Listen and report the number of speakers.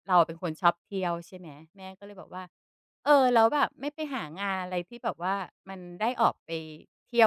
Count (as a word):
one